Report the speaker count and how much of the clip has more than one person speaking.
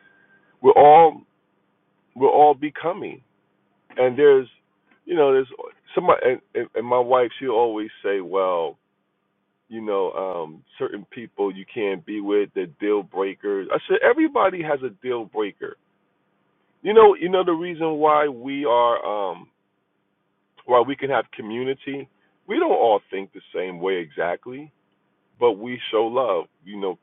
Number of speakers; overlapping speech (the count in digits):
1, no overlap